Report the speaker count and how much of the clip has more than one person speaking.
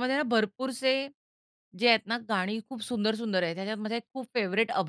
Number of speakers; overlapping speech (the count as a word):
one, no overlap